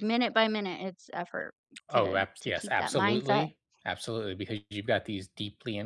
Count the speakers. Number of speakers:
two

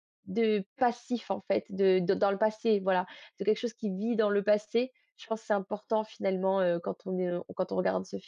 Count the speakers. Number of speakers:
one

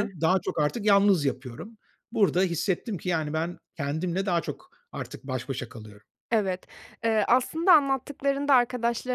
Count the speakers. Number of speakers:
two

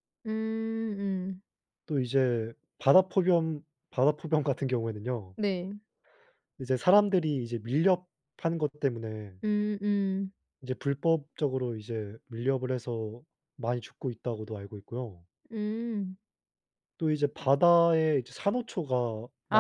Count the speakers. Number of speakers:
two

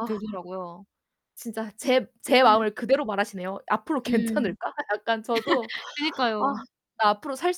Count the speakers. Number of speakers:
two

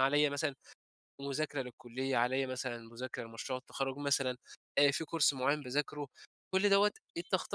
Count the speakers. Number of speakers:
one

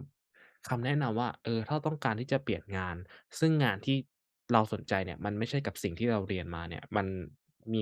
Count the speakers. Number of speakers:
one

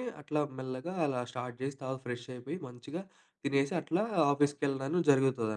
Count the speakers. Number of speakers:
one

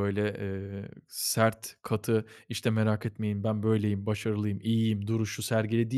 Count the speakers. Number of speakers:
one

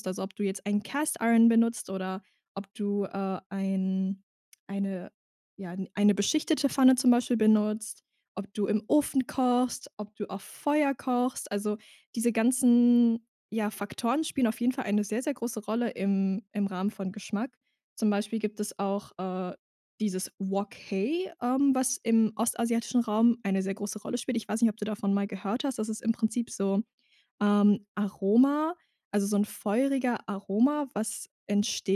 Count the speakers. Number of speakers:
one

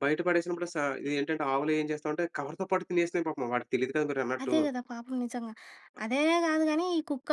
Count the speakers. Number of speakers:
two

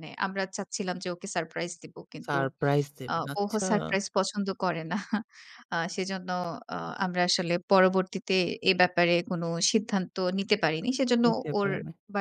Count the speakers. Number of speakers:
two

